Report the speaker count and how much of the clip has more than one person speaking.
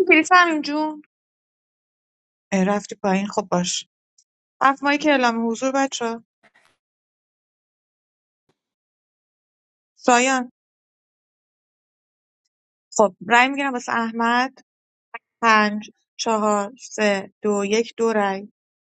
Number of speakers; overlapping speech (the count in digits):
1, no overlap